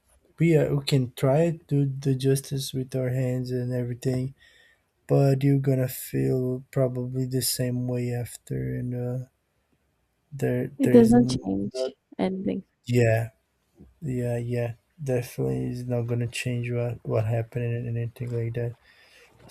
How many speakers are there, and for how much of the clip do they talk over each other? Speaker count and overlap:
2, about 6%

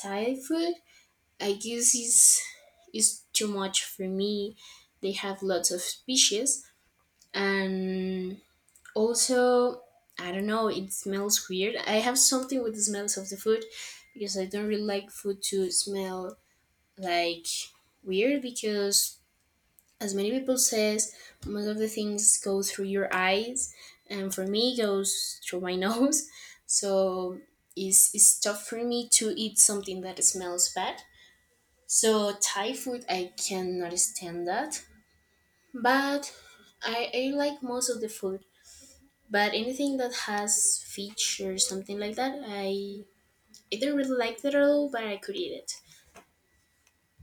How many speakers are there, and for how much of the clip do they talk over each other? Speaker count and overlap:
1, no overlap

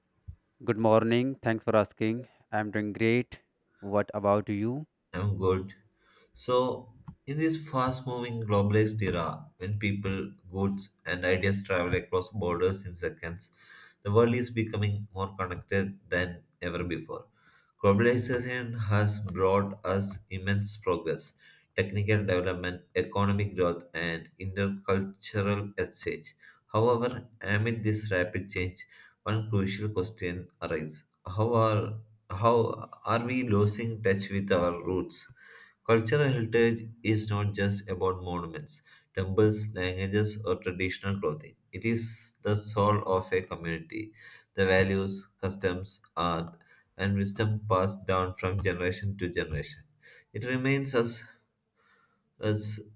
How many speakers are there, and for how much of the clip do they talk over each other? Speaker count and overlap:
2, no overlap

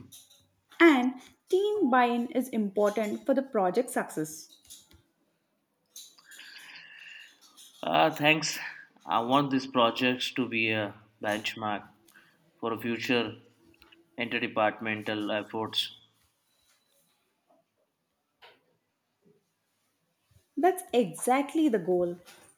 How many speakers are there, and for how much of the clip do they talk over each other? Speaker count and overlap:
2, no overlap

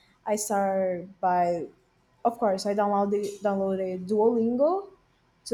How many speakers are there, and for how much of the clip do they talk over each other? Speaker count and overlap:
1, no overlap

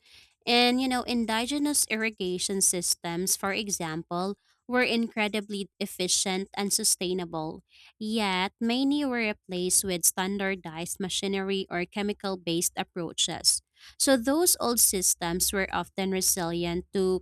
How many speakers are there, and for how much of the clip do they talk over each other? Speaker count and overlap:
1, no overlap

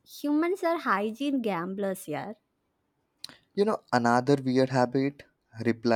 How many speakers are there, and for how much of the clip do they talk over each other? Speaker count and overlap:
2, no overlap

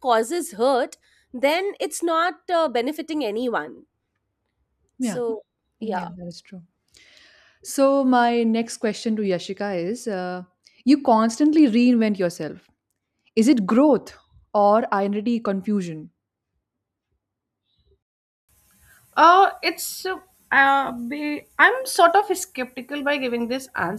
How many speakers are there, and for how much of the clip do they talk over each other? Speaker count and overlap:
3, about 1%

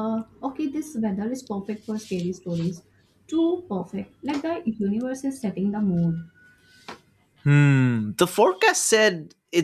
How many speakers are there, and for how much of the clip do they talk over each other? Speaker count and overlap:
2, no overlap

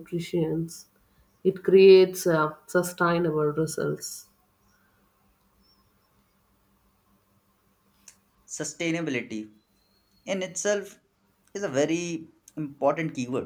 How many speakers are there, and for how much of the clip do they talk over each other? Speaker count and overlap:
2, no overlap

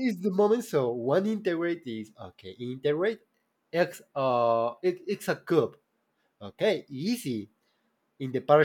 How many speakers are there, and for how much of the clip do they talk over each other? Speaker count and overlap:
1, no overlap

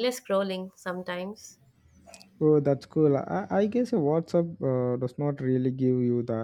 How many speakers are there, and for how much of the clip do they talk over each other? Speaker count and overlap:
2, no overlap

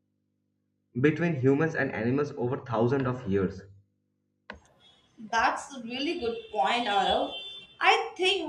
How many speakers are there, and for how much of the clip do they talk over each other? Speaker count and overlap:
2, no overlap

